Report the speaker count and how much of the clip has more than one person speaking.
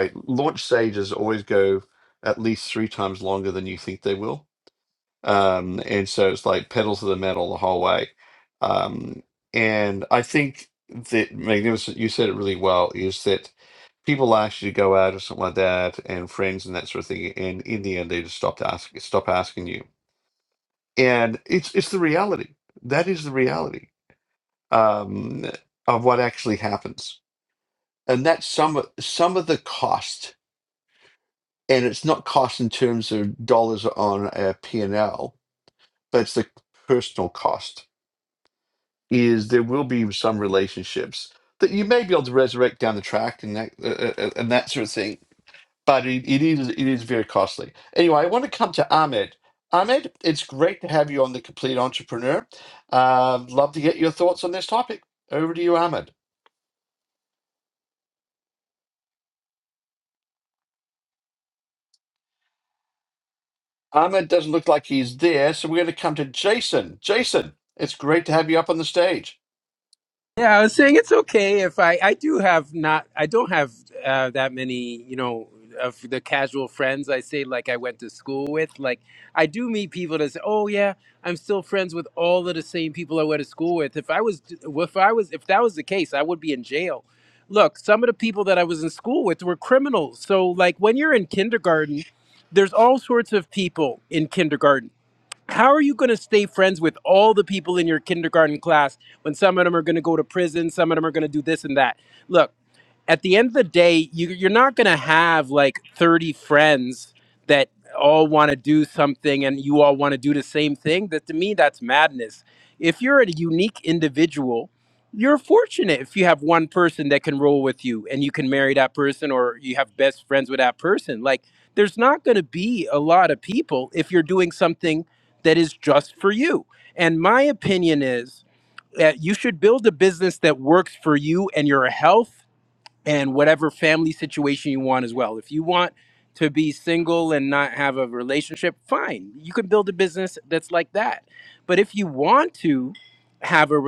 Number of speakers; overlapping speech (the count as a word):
two, no overlap